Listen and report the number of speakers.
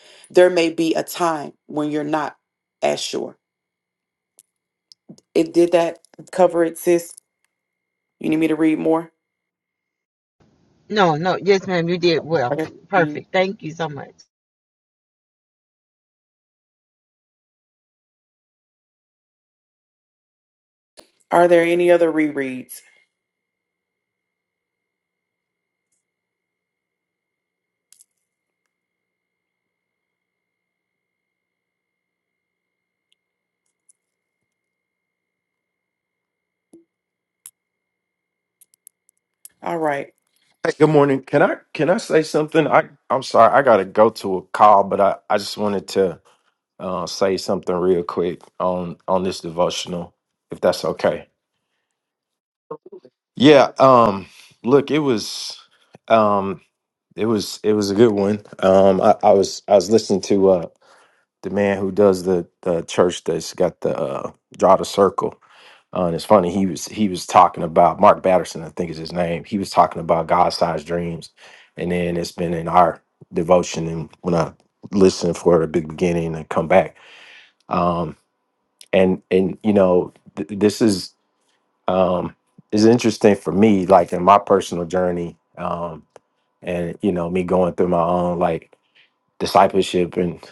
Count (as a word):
three